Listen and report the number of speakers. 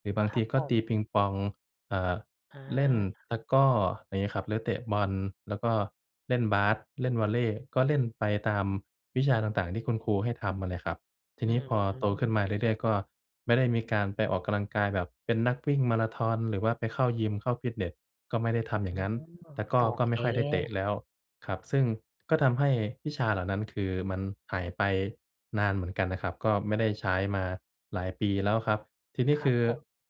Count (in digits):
2